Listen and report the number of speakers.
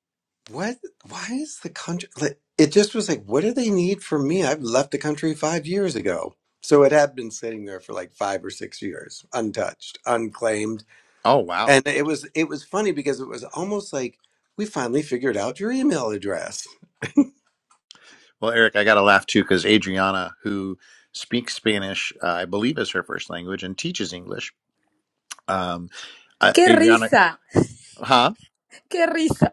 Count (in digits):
3